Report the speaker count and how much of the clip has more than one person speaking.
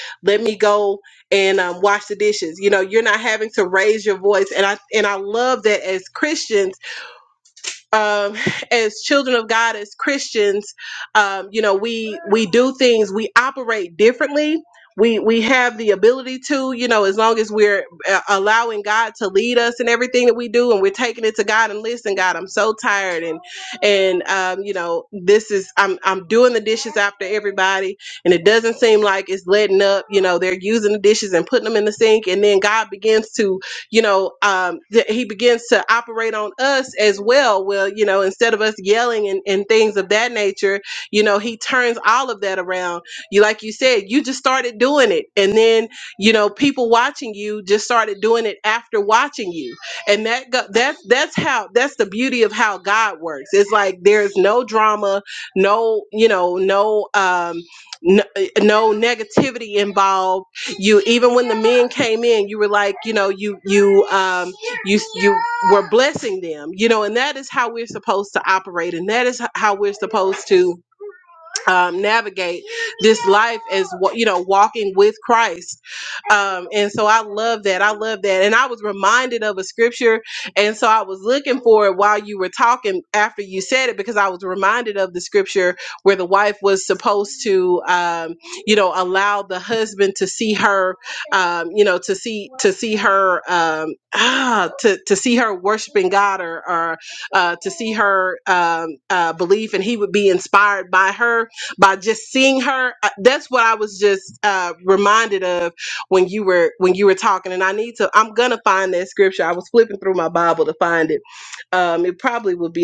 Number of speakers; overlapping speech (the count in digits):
1, no overlap